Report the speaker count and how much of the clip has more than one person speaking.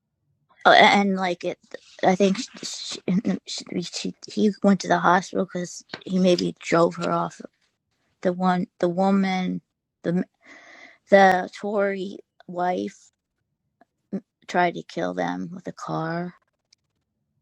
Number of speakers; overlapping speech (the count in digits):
1, no overlap